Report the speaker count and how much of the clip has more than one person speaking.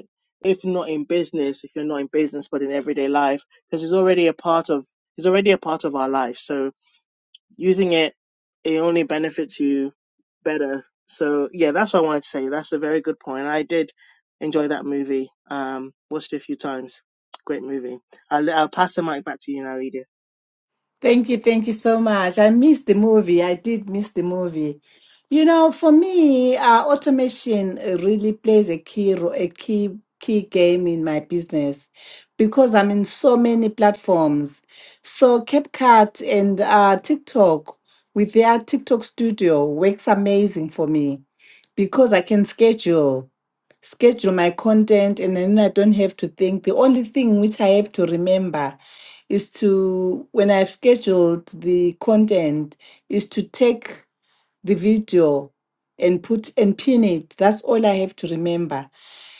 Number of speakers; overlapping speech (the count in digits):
2, no overlap